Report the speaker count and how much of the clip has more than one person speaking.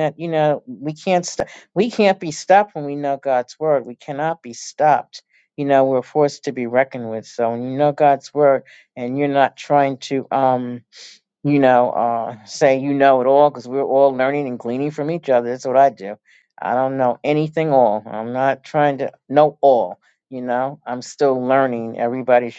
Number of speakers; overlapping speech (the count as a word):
one, no overlap